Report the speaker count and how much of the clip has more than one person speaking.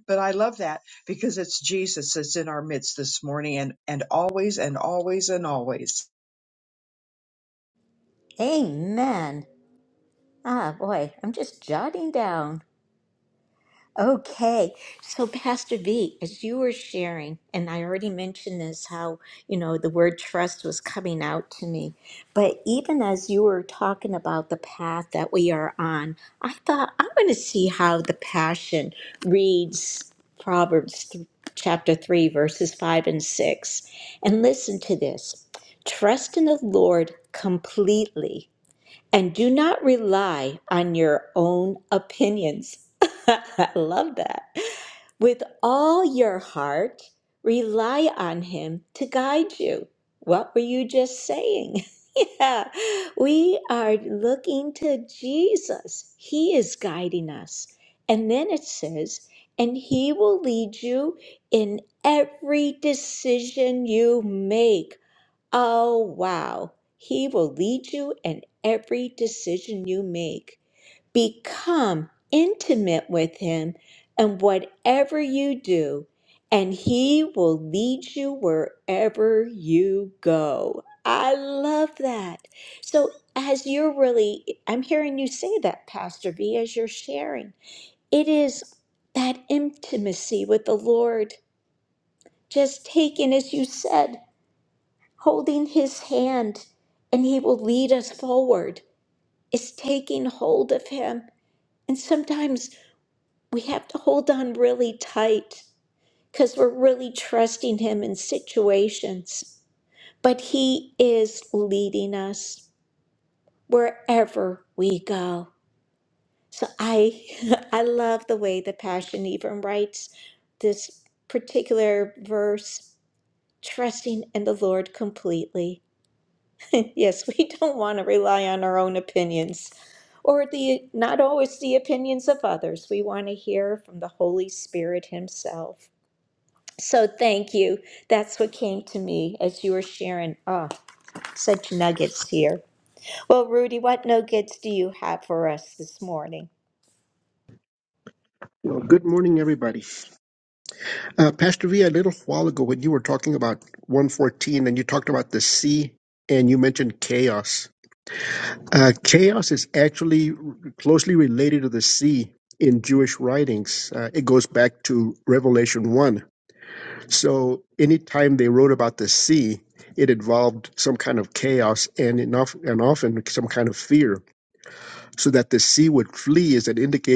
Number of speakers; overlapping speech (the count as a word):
three, no overlap